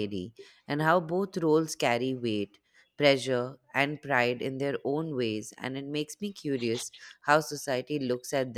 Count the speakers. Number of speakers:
1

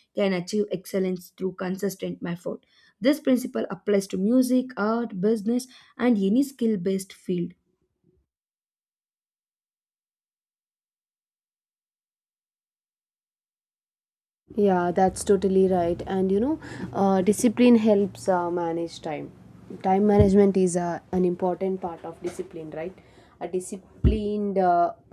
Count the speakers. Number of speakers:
2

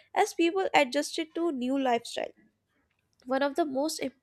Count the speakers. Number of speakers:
1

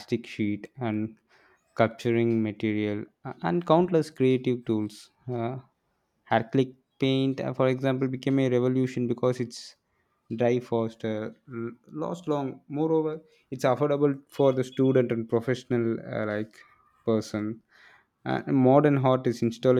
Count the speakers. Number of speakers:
1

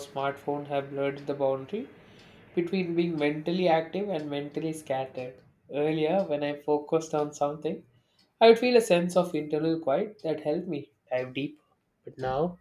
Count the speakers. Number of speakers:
1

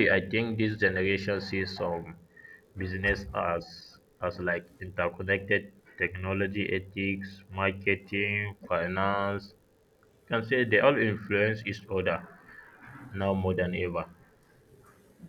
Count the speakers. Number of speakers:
1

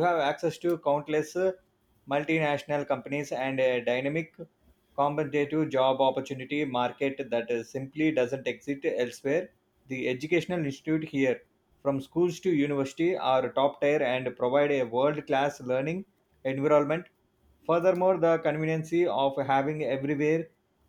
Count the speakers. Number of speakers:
1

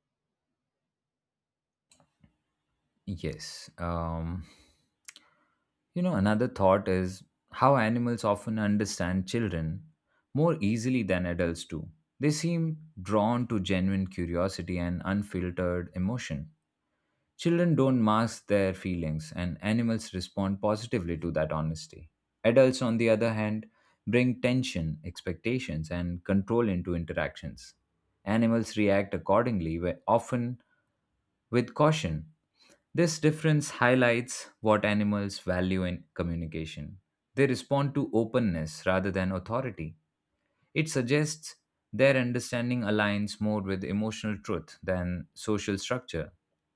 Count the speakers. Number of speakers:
1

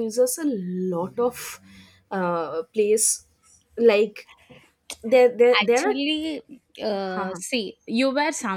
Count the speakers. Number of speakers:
2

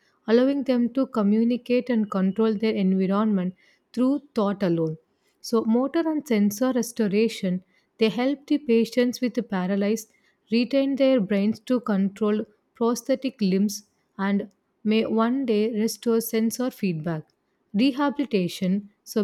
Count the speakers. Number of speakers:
1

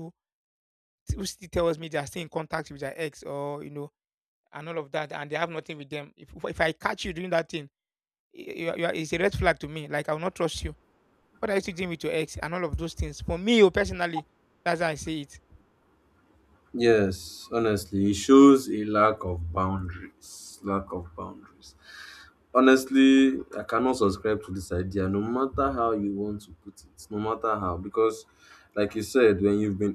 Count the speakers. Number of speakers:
2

